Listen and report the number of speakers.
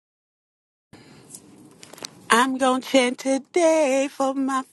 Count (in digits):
1